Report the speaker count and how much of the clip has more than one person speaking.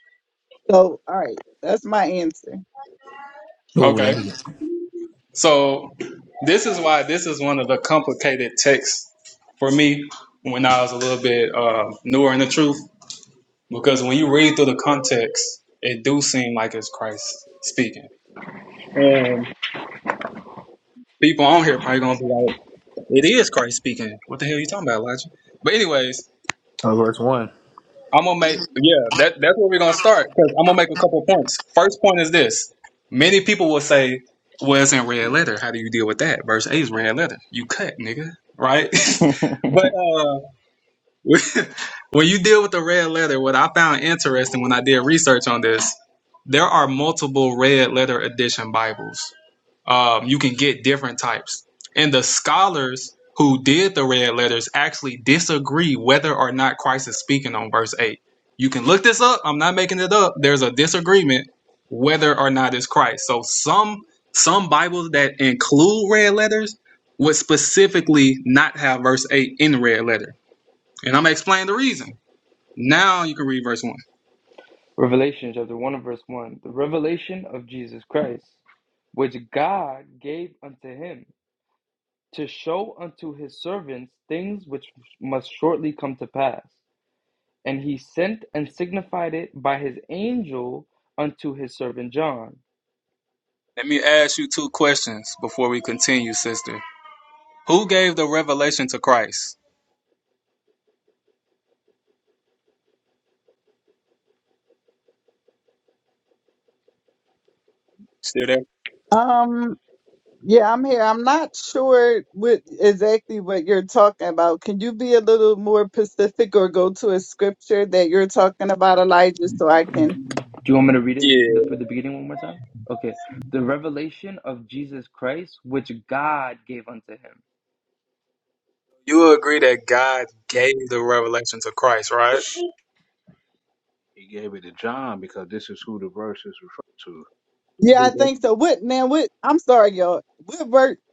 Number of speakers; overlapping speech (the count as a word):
five, about 1%